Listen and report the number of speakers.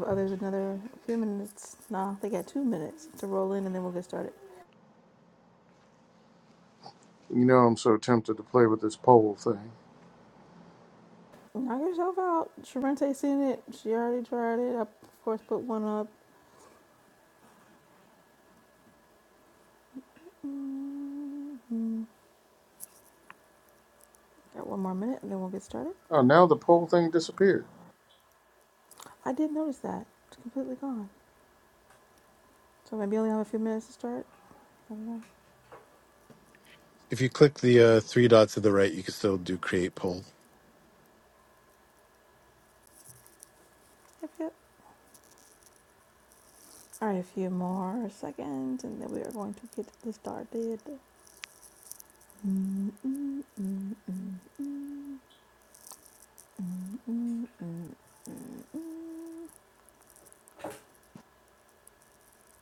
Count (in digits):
3